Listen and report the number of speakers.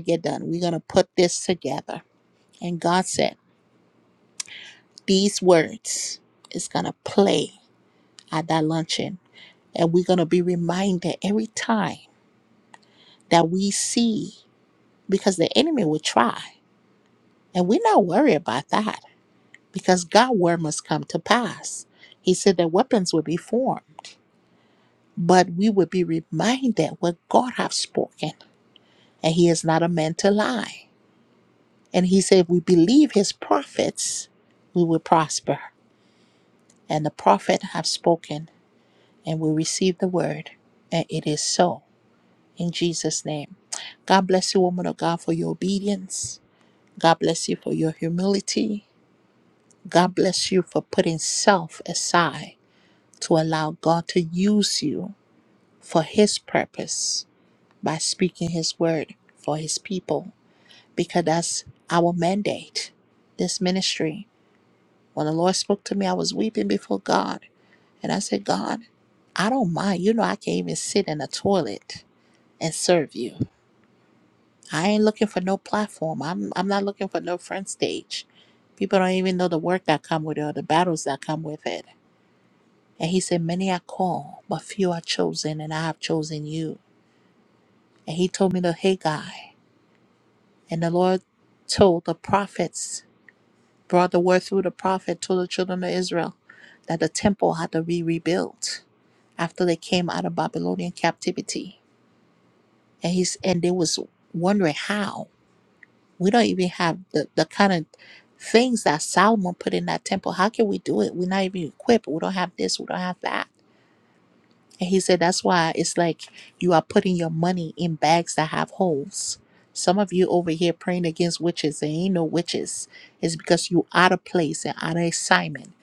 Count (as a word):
one